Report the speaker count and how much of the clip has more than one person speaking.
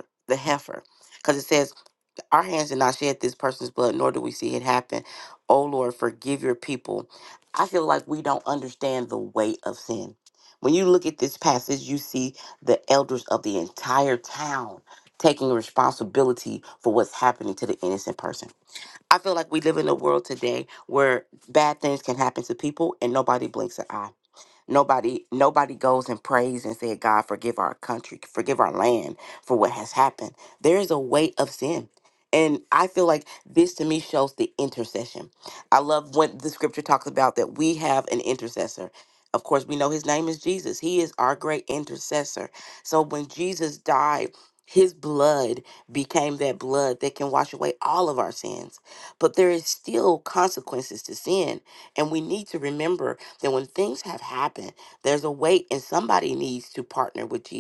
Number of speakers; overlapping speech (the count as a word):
one, no overlap